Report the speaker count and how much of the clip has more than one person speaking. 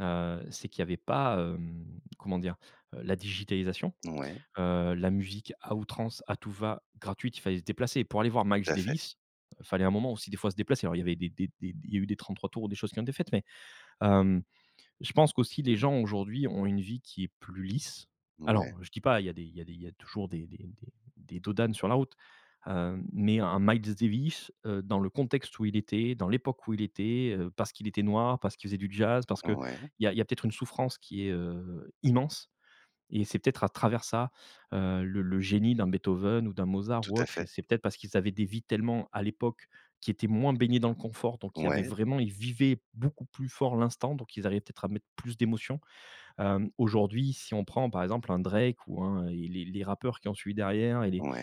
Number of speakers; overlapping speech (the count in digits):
2, about 3%